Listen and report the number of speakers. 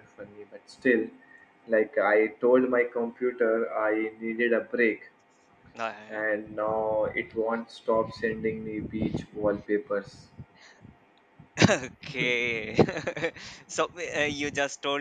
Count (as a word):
two